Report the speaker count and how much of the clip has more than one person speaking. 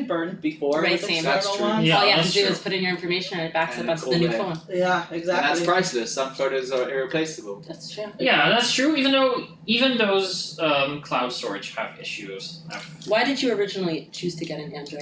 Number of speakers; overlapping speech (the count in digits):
4, about 22%